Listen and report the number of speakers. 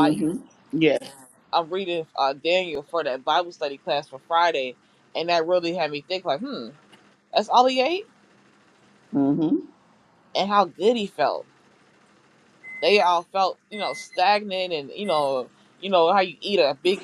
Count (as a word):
two